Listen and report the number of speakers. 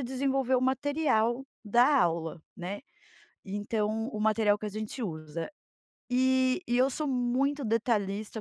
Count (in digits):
1